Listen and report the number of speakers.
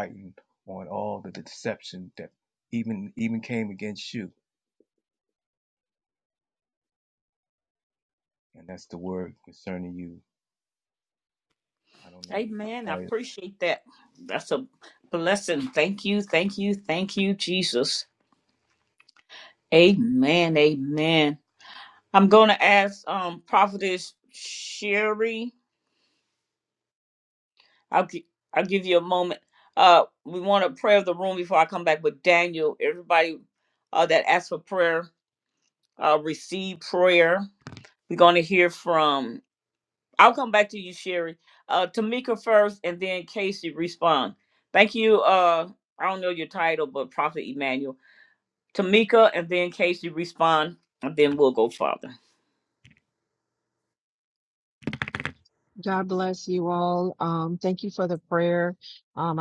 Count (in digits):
3